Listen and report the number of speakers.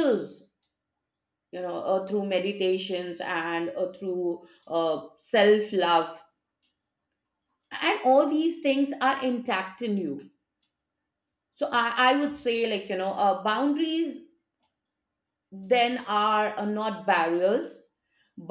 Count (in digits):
1